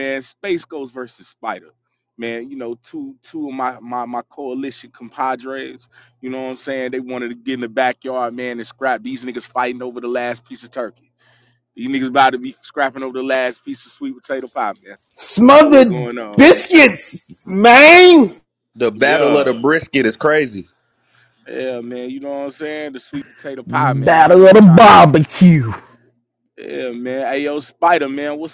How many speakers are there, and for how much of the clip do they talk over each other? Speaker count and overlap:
4, about 9%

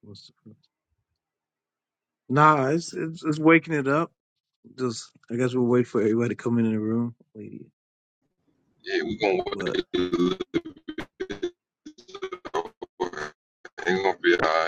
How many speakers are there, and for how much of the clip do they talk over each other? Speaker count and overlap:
2, about 2%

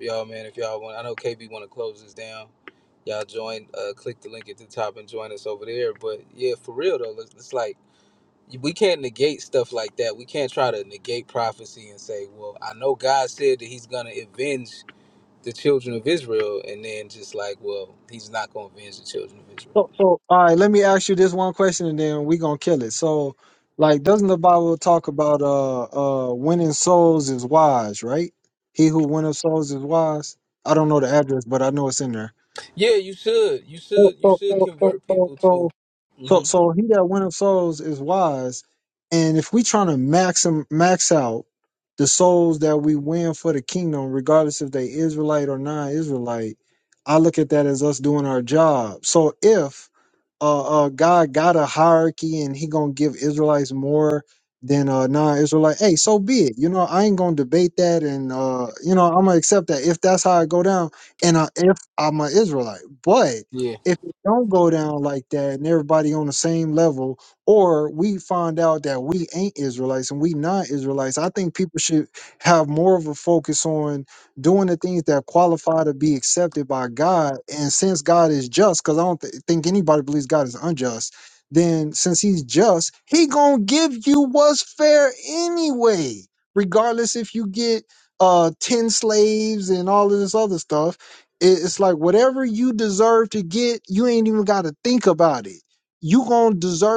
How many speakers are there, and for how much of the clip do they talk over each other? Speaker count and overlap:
2, about 2%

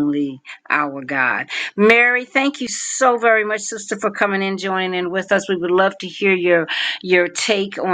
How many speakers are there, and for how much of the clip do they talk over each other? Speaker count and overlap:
1, no overlap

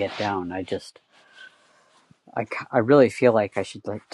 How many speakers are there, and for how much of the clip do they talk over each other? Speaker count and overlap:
1, no overlap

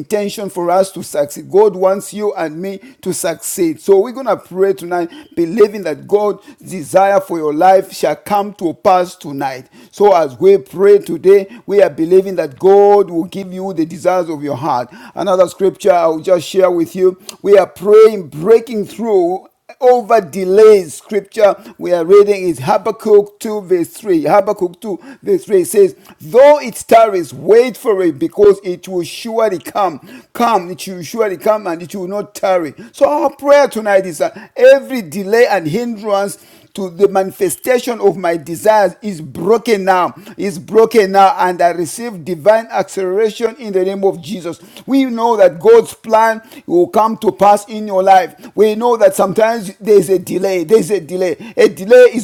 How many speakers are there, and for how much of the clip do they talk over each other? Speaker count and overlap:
1, no overlap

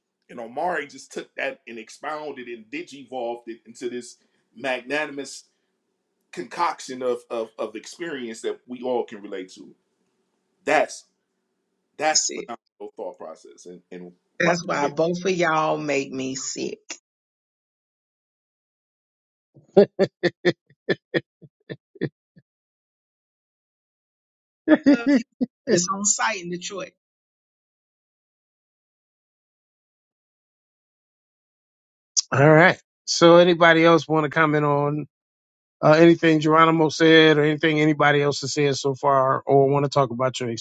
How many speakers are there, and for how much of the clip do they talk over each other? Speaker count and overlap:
3, about 2%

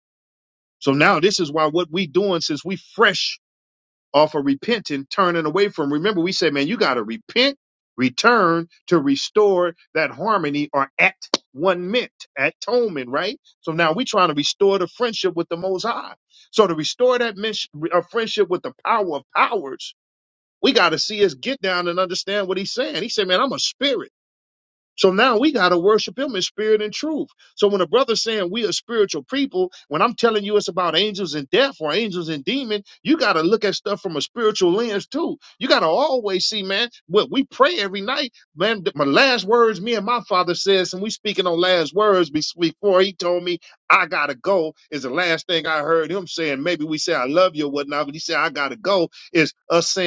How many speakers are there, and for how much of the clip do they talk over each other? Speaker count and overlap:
1, no overlap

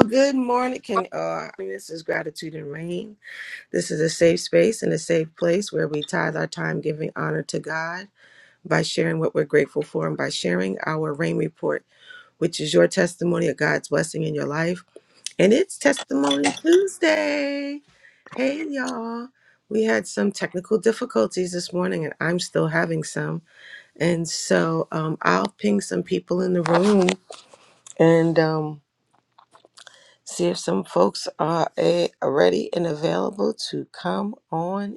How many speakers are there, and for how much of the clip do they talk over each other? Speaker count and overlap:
1, no overlap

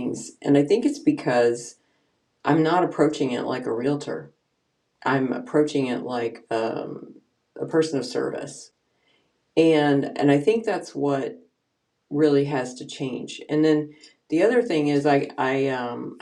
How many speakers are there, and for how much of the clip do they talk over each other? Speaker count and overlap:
1, no overlap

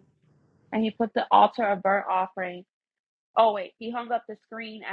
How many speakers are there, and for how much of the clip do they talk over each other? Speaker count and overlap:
1, no overlap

